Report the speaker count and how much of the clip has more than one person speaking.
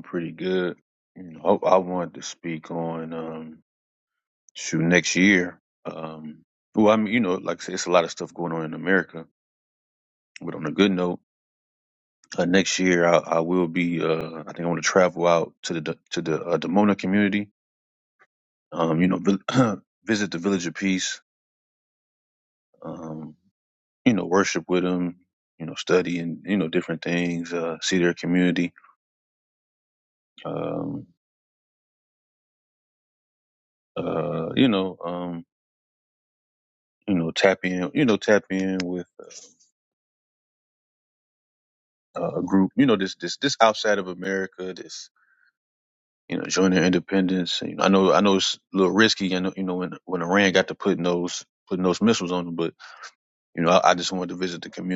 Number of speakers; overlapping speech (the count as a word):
one, no overlap